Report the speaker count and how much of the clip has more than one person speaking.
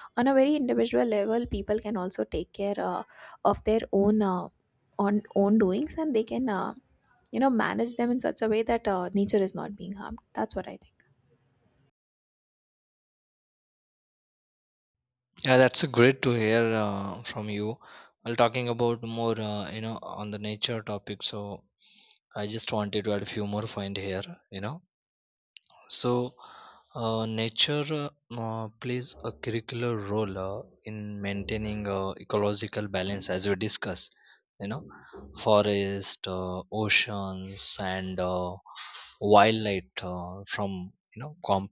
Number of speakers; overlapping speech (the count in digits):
2, no overlap